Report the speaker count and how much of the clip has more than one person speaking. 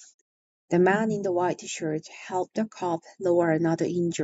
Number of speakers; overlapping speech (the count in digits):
1, no overlap